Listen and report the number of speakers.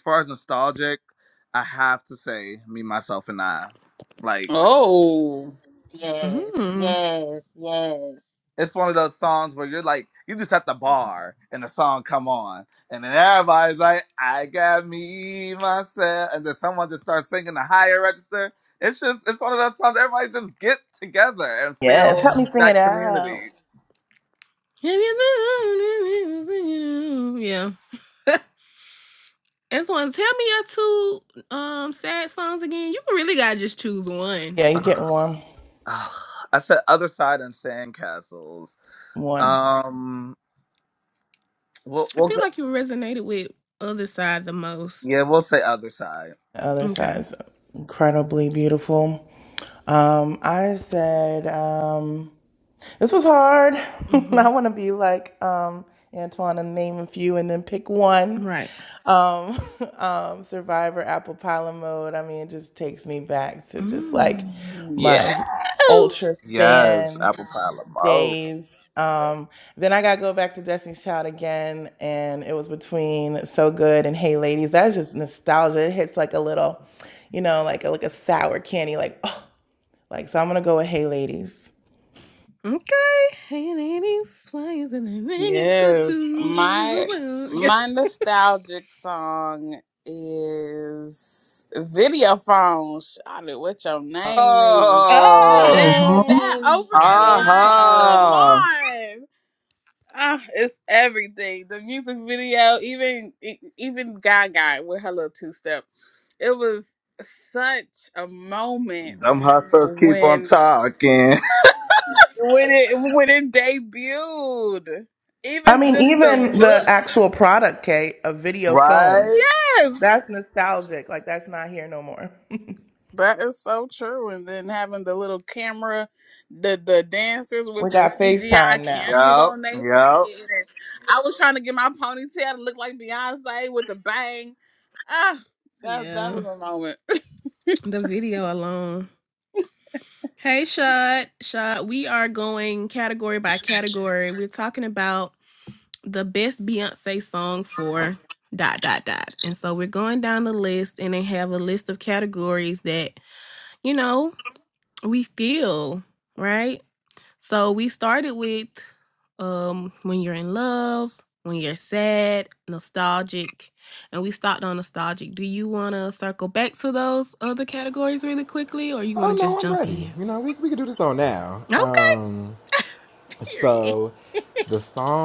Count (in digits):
6